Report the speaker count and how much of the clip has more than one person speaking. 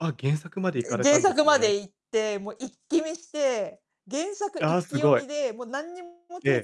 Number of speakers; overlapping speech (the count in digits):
2, about 26%